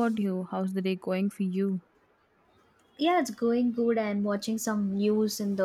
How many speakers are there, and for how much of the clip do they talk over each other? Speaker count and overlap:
two, no overlap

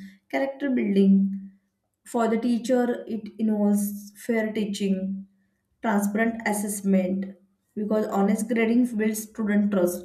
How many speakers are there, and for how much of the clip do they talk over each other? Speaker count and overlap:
one, no overlap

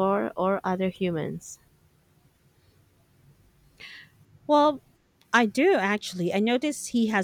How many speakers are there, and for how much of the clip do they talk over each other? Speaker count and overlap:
two, no overlap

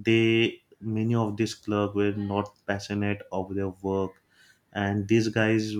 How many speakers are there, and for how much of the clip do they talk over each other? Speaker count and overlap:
one, no overlap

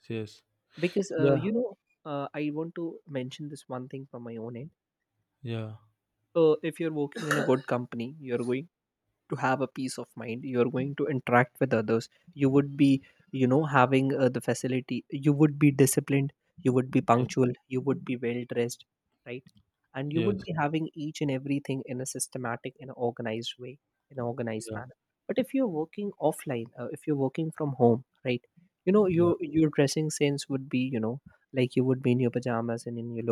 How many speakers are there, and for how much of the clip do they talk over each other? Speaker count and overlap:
two, about 3%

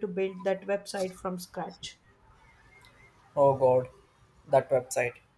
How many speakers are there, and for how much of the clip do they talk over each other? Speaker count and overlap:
two, no overlap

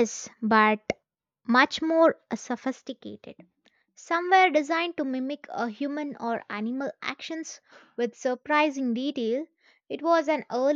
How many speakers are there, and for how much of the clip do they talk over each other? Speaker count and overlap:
one, no overlap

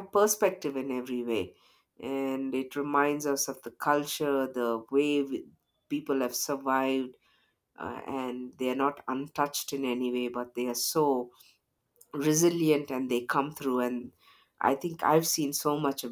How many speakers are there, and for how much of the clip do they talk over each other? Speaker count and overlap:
one, no overlap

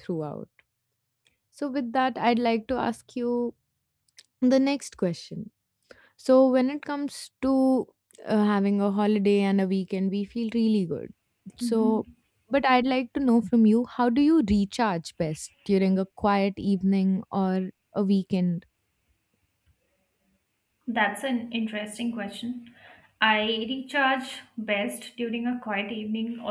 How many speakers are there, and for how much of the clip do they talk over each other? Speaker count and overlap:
two, about 2%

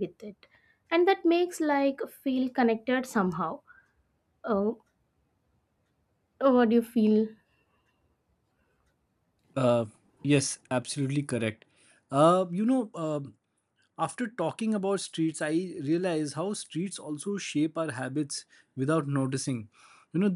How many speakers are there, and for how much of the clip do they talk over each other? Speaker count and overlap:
two, no overlap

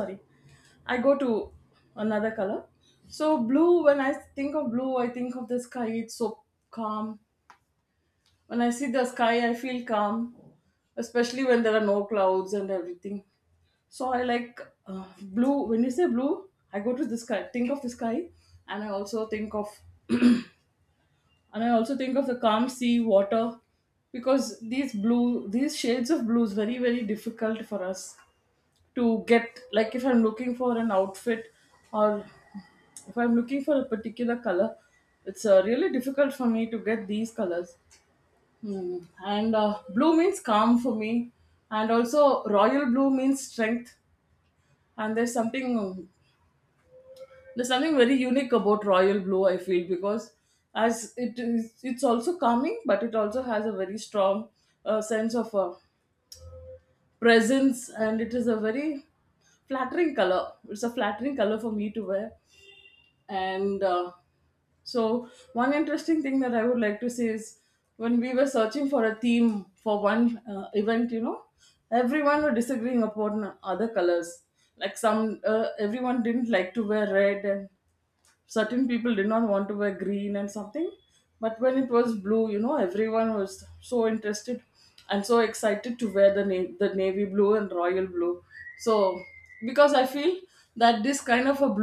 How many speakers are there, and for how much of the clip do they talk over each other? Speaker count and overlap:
one, no overlap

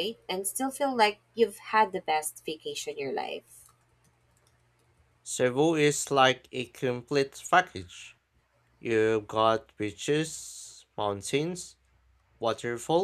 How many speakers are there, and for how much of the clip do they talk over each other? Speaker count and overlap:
two, no overlap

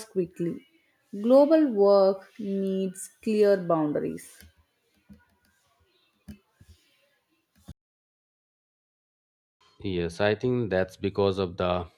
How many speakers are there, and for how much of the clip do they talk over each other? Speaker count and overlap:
two, no overlap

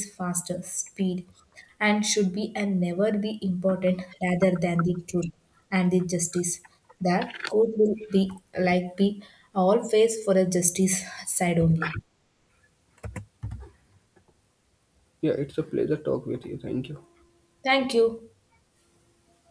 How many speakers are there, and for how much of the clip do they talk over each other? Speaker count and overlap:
two, no overlap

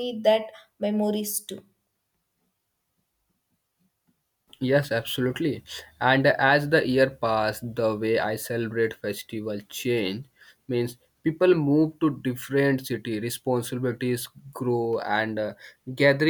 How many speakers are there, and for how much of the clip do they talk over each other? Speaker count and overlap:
two, no overlap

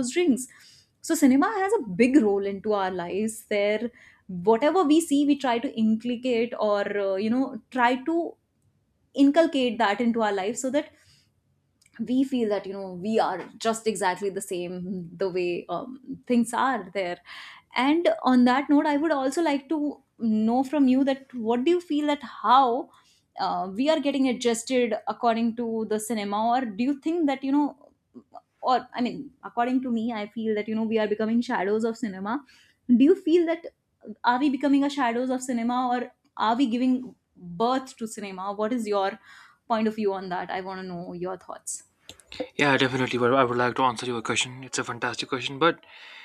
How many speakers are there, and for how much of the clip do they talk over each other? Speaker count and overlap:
two, no overlap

